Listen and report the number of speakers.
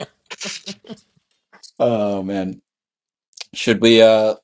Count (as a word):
one